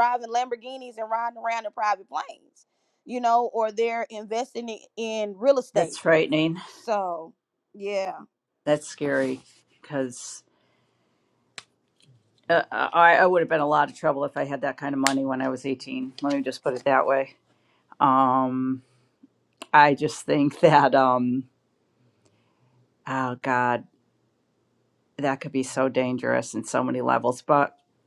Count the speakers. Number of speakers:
2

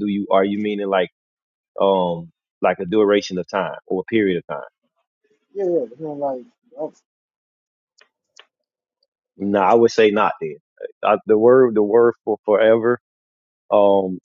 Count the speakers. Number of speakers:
2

